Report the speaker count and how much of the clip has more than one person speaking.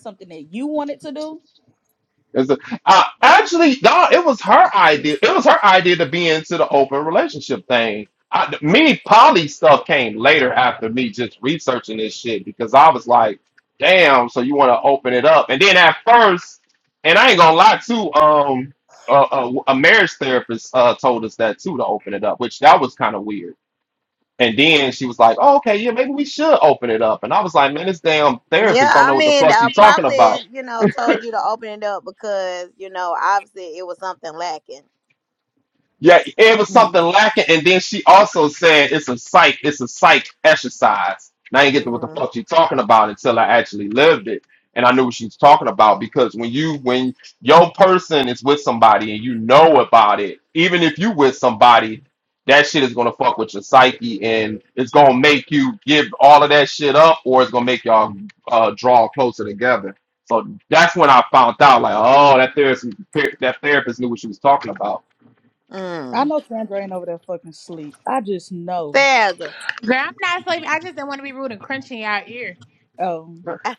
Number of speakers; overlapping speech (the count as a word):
four, about 3%